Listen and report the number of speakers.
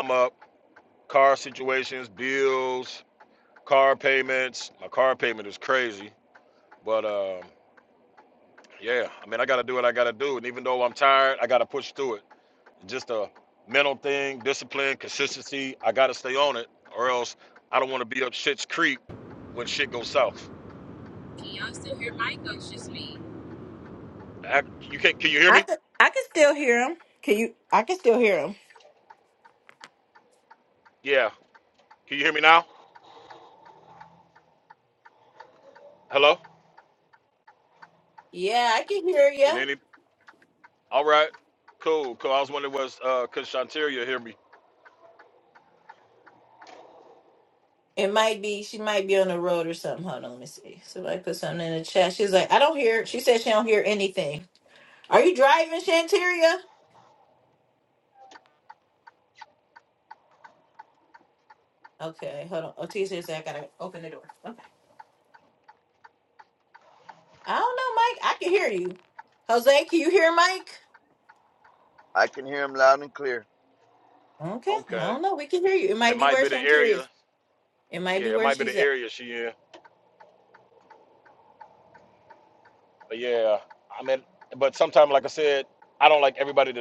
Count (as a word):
four